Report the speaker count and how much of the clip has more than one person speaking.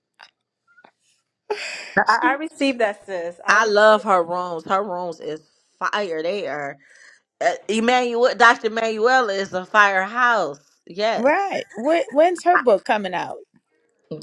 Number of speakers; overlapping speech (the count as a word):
three, about 9%